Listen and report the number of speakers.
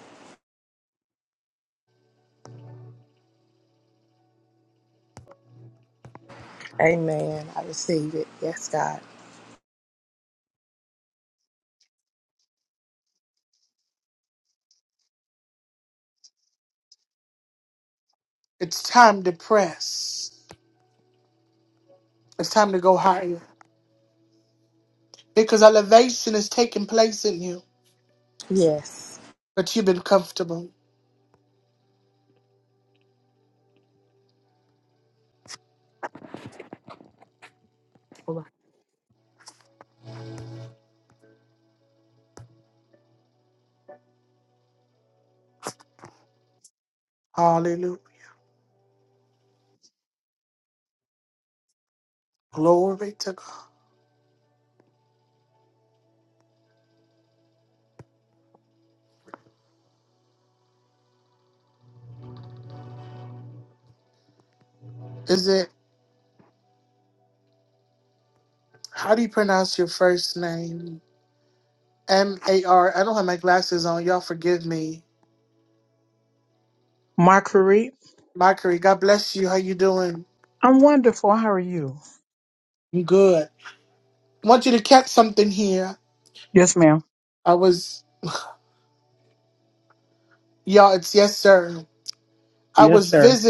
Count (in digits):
3